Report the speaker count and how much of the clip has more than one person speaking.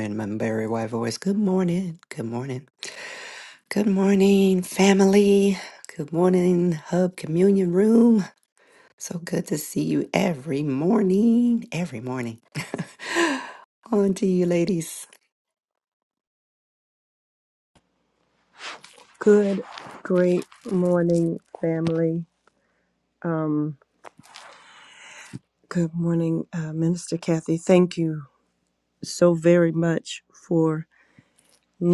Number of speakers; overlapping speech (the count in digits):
2, no overlap